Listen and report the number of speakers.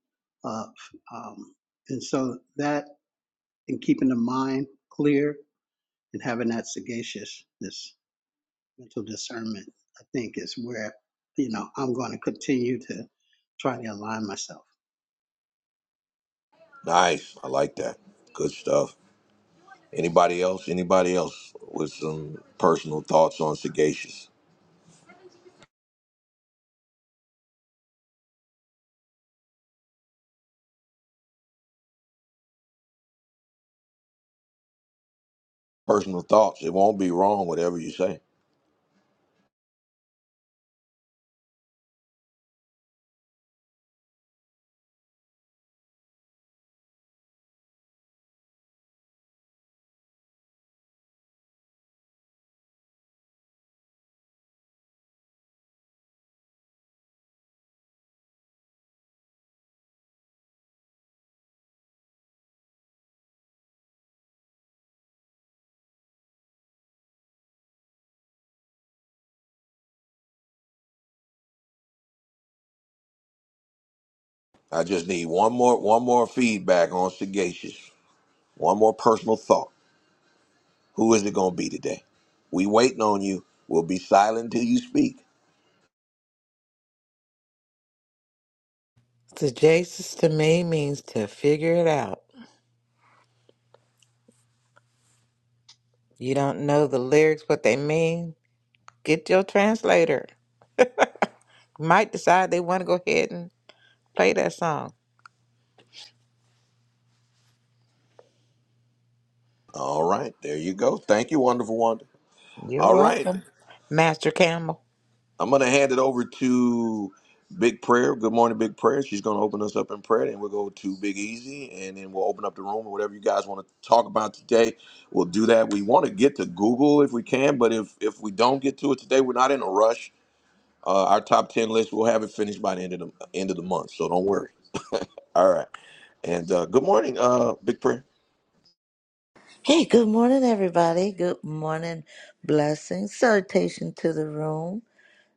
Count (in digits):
4